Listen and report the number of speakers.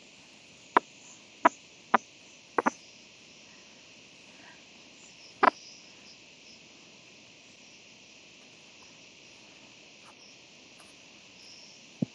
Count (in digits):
0